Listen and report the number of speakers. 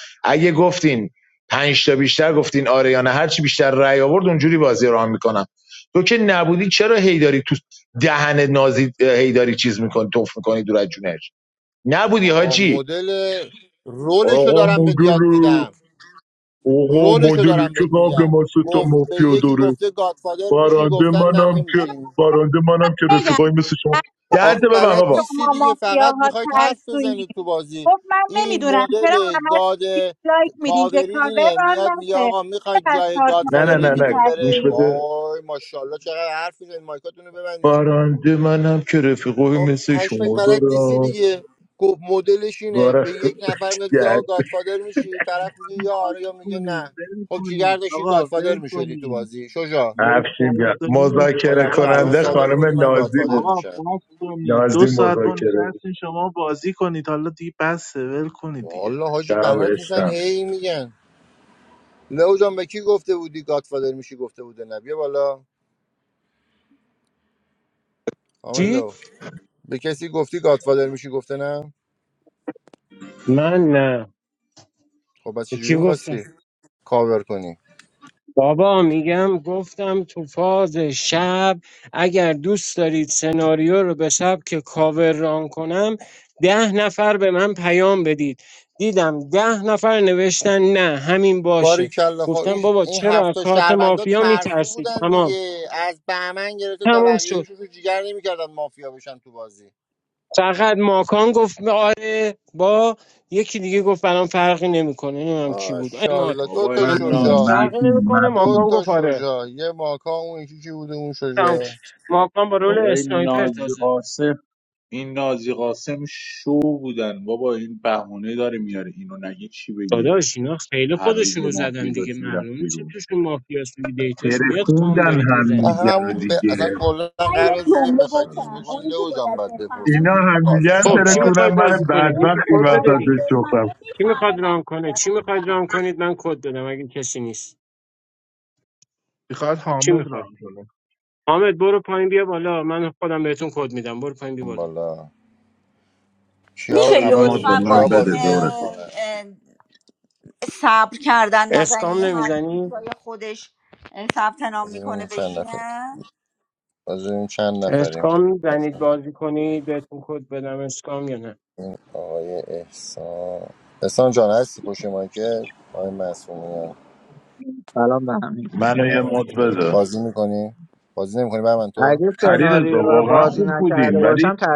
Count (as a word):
eight